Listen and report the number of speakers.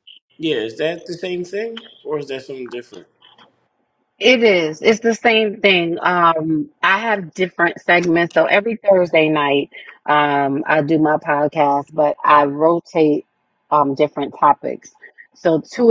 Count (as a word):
two